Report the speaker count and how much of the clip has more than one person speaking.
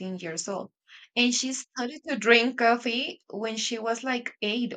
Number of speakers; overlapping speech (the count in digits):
1, no overlap